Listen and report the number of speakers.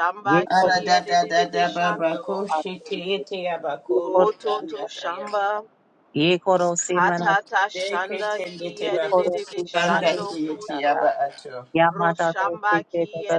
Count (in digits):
3